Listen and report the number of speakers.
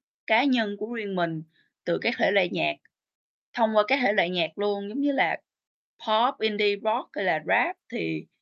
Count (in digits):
1